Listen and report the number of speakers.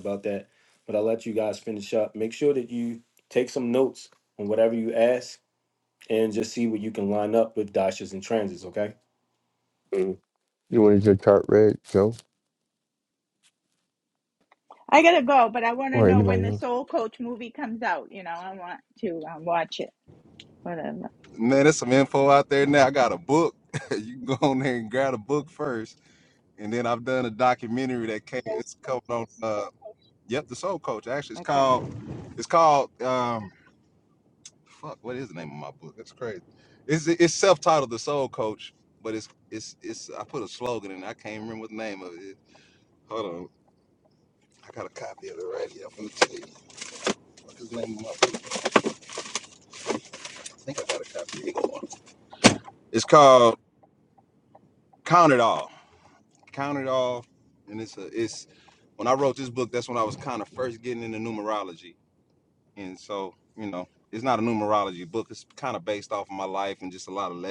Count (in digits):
4